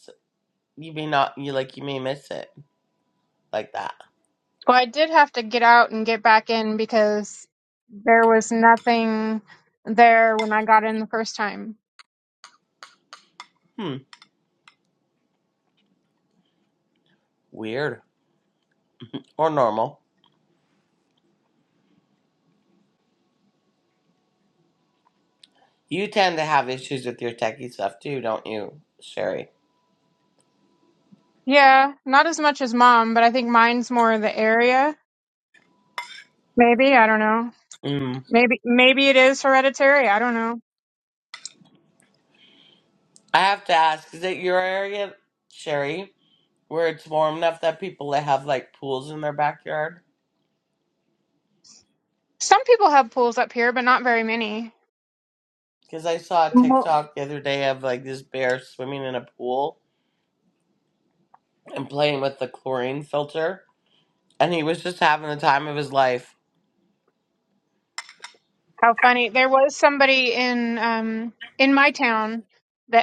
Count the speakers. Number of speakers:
2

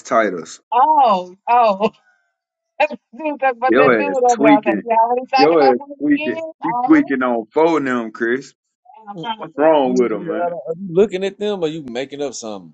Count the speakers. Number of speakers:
3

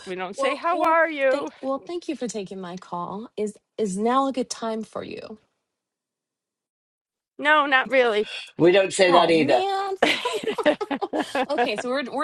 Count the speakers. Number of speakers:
3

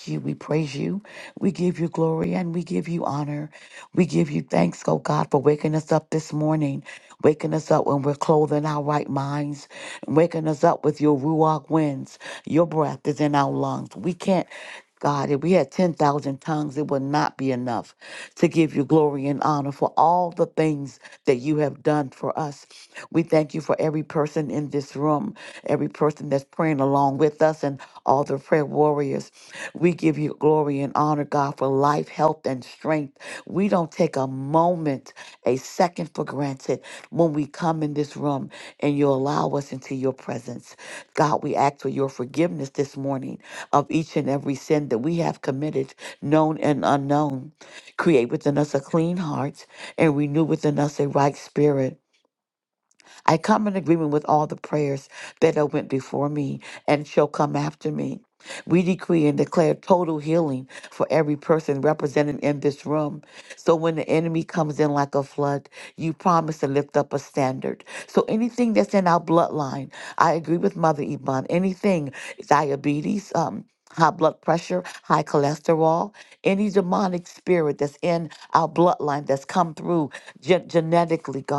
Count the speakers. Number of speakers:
1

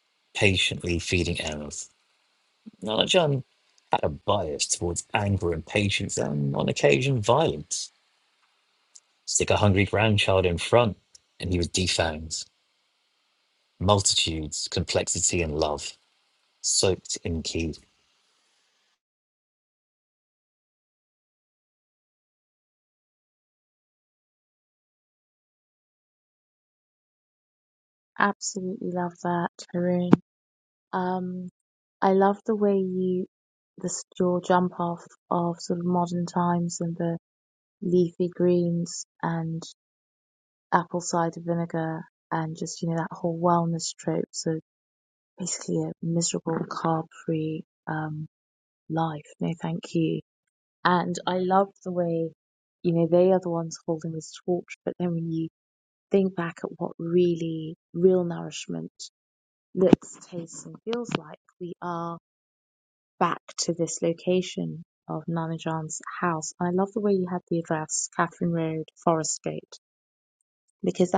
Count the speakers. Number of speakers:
2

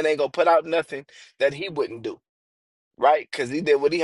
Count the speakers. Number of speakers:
1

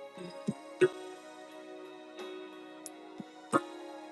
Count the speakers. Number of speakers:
0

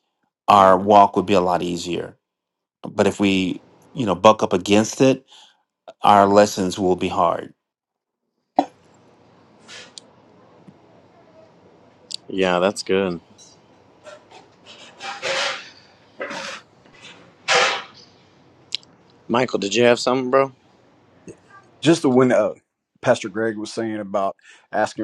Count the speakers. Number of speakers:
3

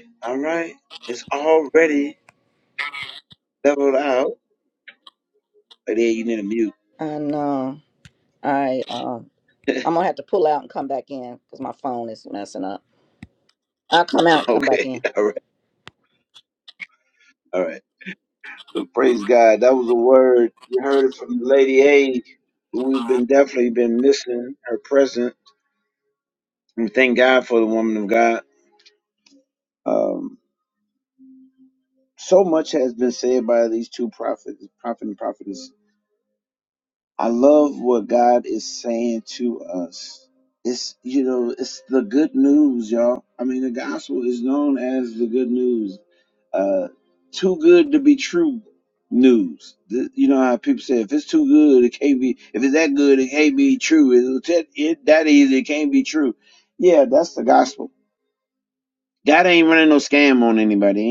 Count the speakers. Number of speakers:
2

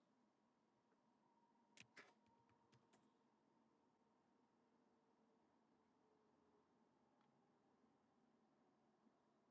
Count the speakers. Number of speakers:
0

